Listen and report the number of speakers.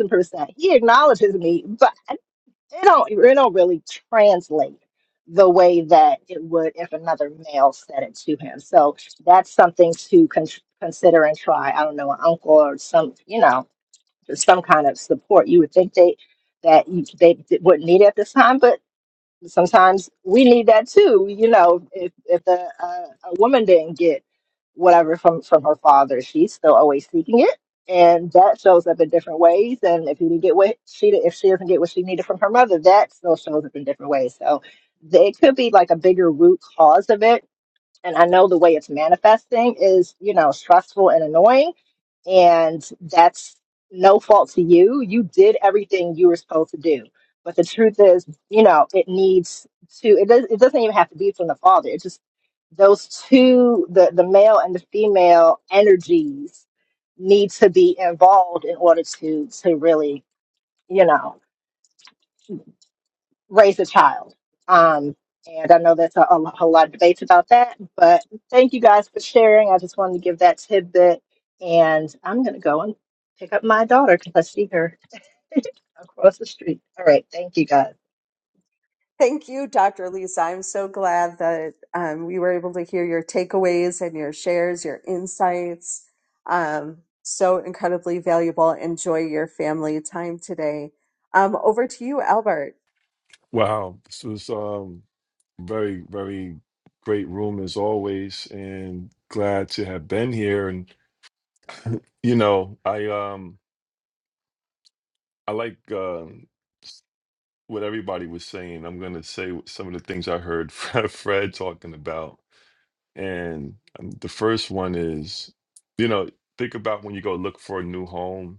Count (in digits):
3